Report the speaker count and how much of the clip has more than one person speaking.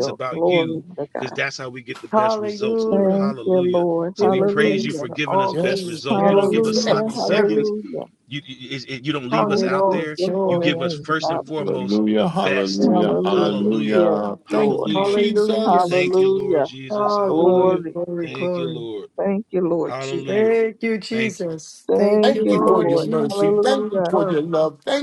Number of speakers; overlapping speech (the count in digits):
4, about 75%